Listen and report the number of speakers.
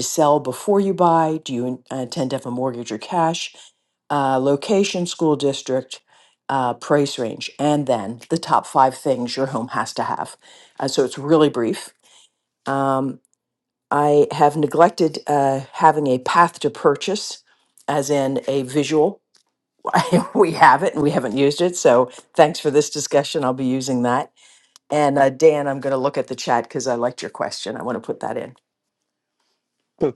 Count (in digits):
1